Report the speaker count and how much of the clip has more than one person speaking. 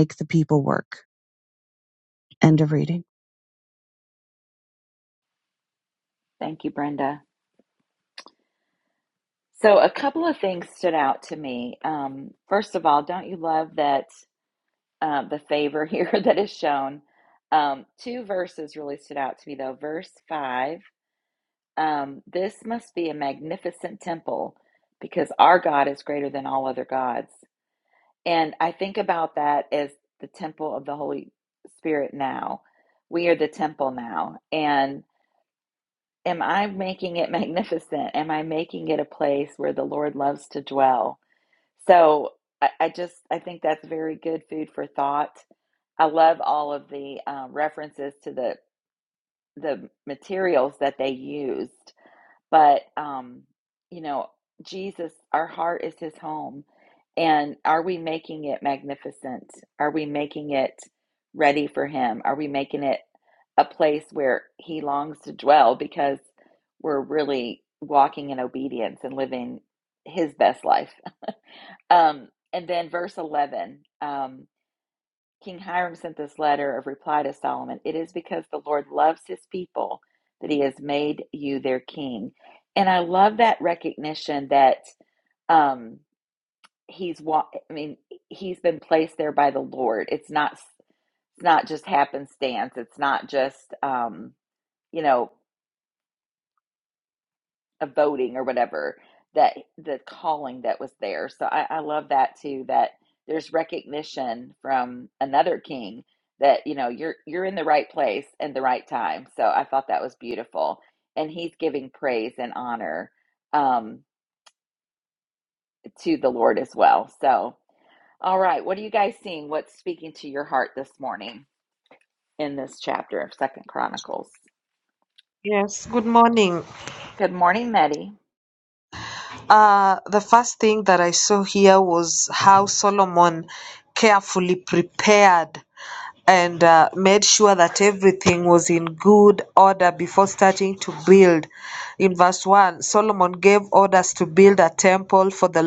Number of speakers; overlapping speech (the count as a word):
three, no overlap